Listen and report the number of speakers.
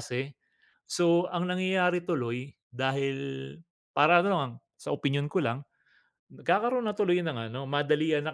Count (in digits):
1